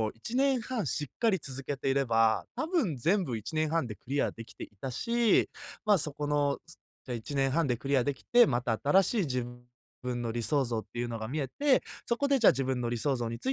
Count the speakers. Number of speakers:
1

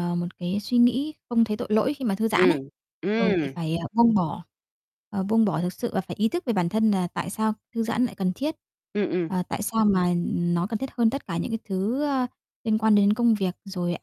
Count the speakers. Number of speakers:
2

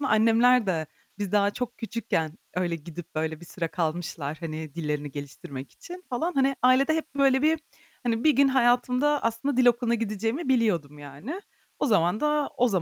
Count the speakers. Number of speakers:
1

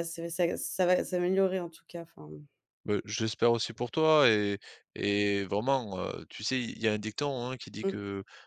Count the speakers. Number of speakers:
2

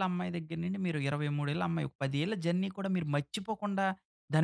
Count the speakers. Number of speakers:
1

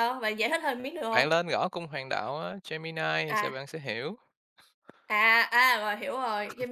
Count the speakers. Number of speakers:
2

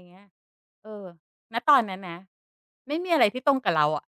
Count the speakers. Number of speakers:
1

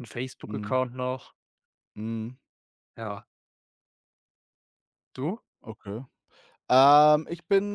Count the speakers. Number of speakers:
2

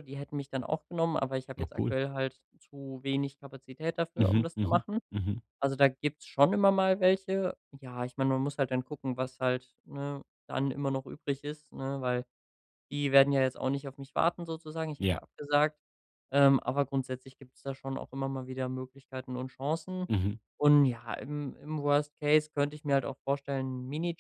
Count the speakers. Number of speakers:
2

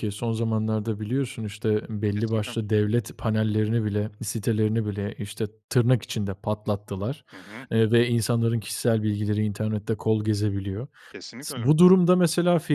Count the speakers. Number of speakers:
2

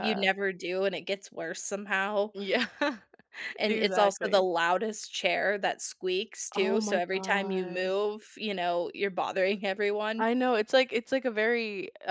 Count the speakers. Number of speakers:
2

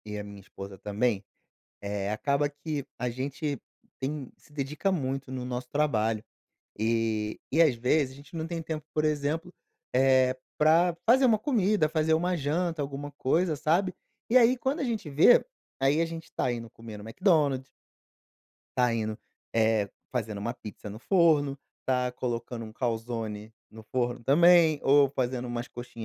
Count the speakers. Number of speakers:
1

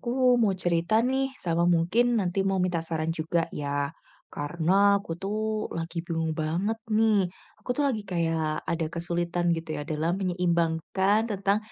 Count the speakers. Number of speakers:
1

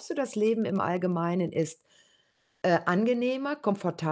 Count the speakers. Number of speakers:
1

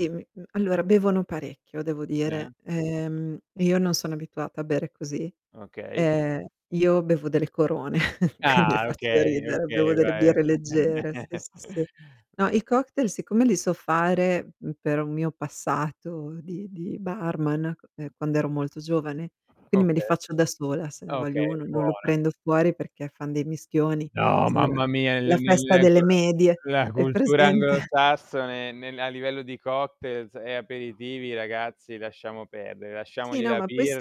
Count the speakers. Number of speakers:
2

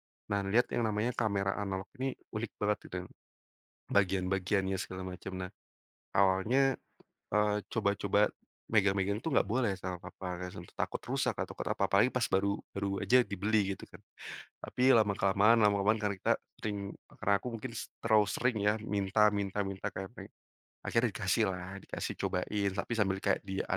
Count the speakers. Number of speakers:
1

